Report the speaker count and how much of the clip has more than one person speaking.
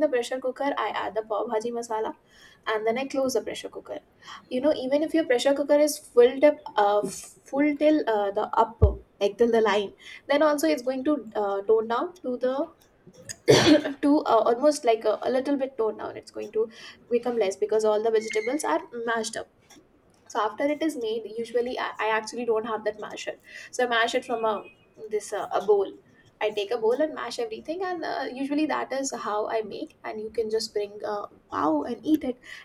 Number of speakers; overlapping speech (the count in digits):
1, no overlap